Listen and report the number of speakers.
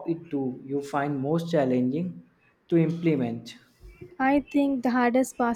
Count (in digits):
2